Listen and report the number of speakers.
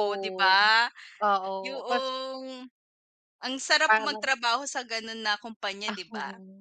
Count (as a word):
two